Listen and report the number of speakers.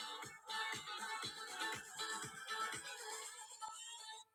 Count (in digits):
0